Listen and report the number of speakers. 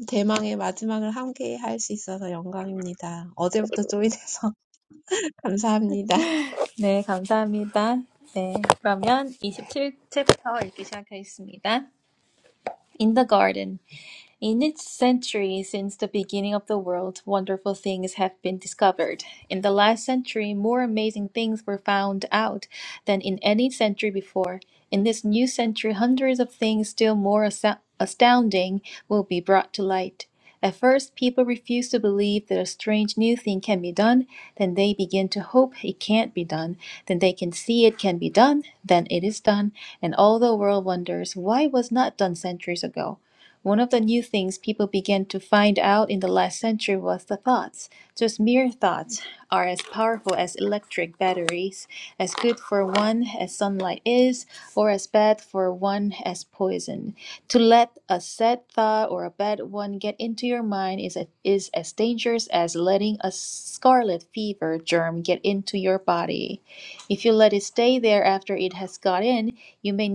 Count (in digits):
2